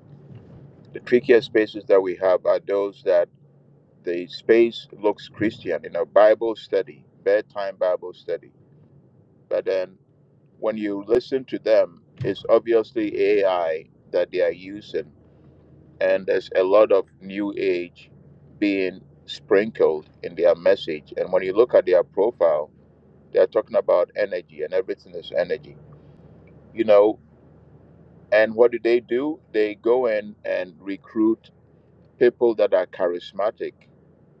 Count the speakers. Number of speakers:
one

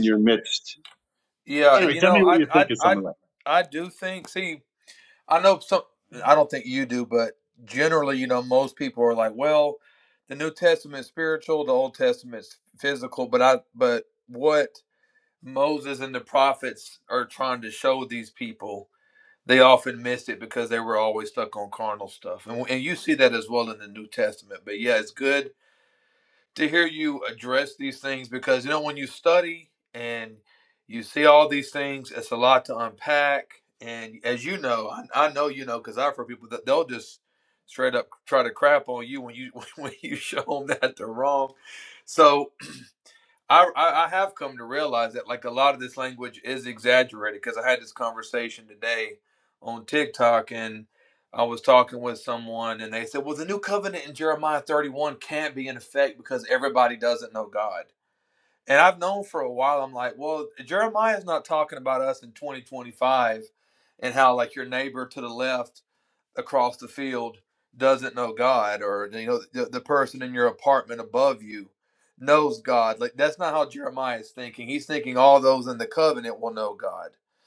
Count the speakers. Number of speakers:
two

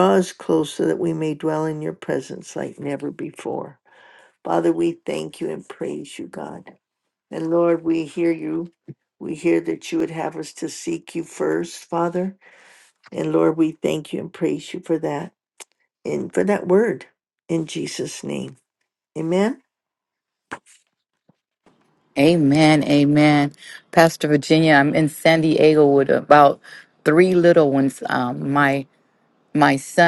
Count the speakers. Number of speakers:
two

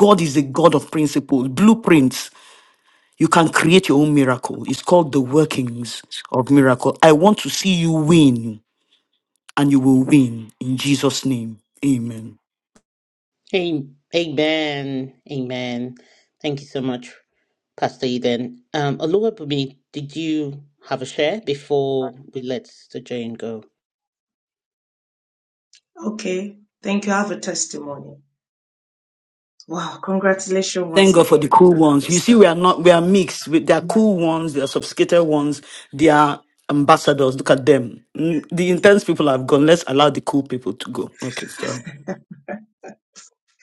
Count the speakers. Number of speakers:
three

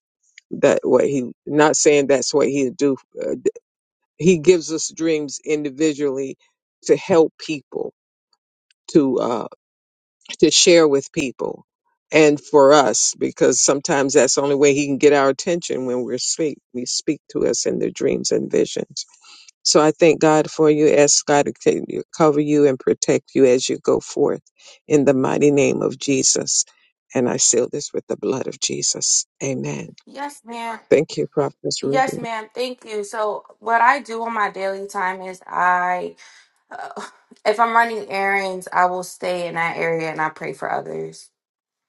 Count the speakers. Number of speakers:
two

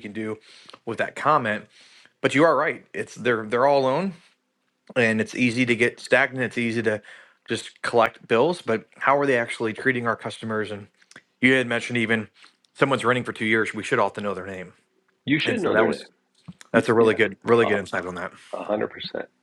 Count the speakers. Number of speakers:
two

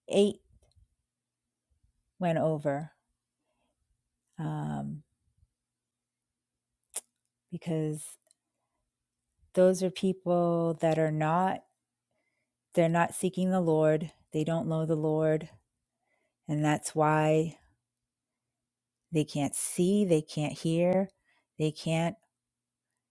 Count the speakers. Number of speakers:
one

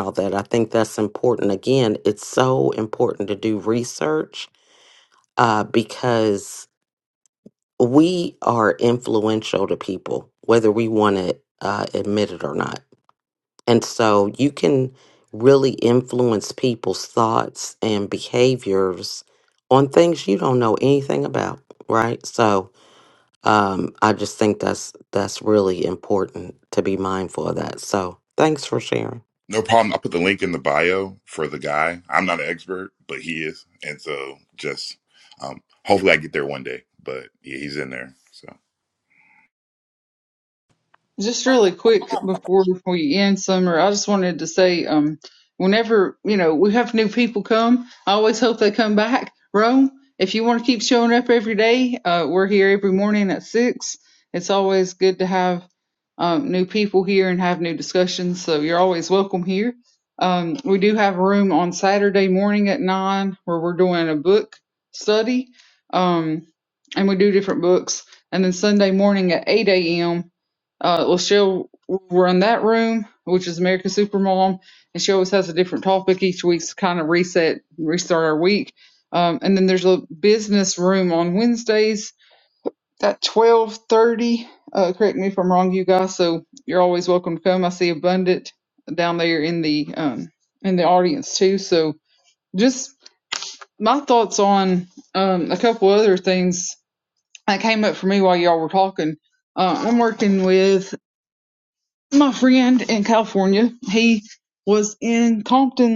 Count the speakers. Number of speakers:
three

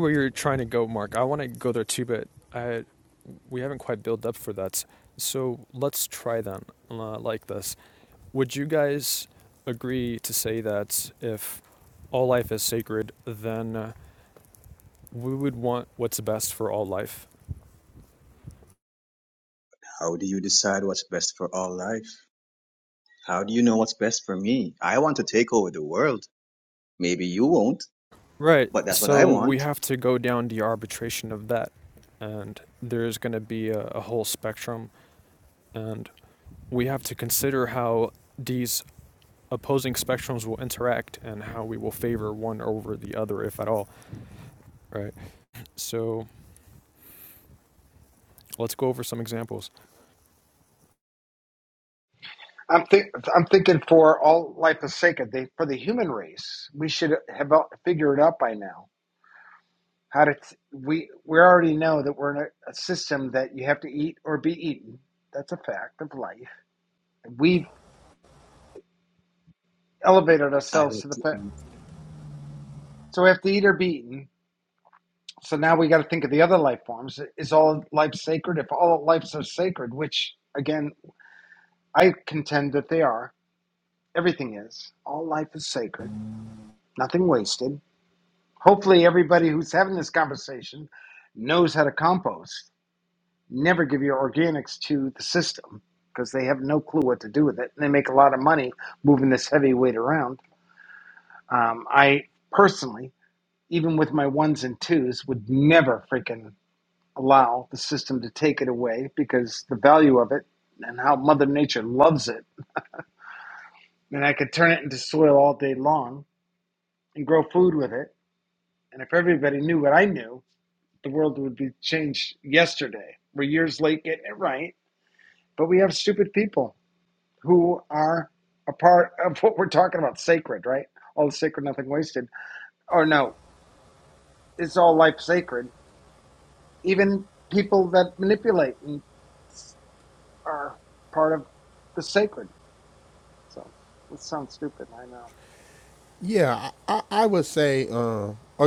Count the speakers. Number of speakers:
four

